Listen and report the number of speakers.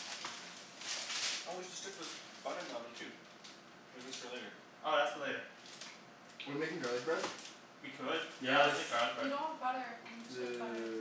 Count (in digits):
4